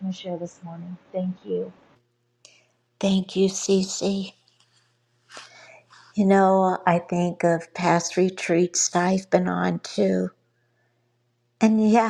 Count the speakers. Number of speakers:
two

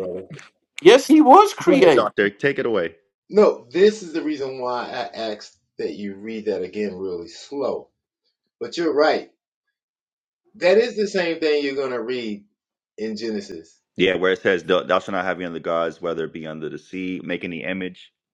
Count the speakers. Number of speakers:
three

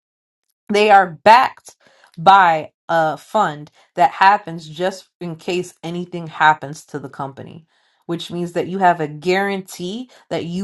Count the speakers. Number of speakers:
one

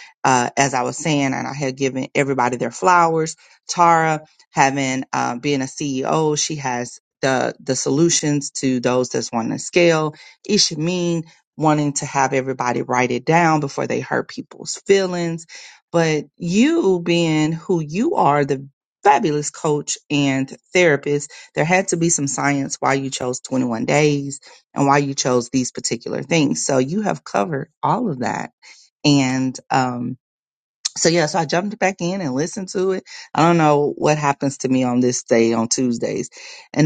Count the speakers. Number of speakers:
one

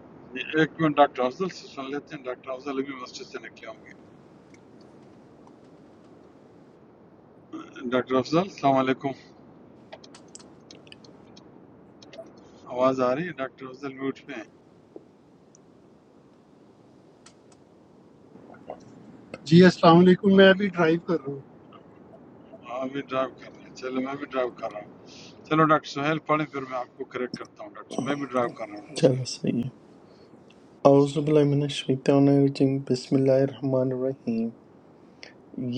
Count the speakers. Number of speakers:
three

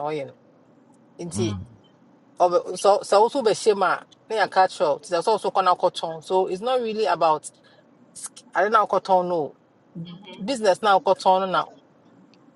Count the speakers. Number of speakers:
one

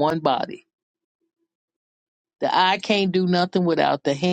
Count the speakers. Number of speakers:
one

